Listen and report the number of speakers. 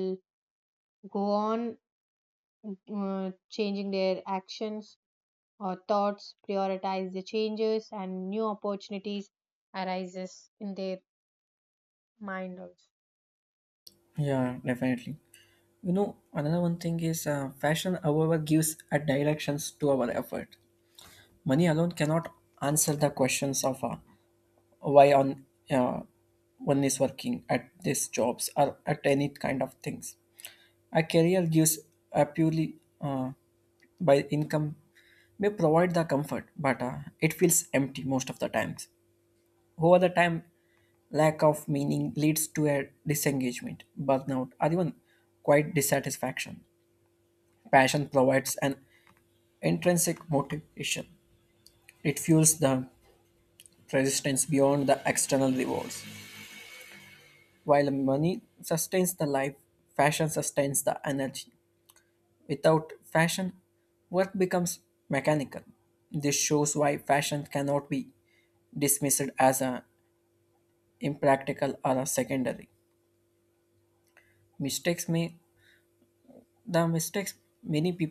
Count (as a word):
two